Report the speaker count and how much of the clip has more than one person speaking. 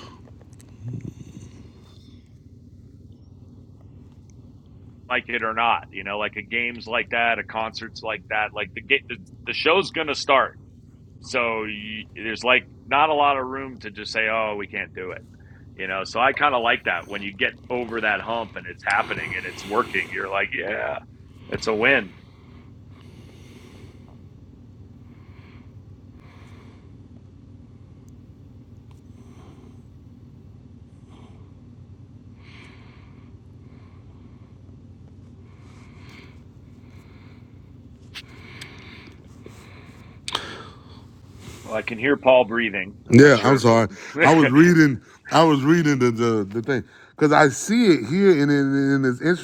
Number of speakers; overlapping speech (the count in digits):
2, about 2%